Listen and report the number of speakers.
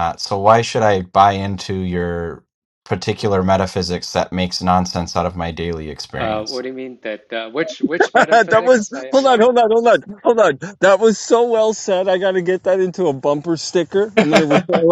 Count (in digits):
3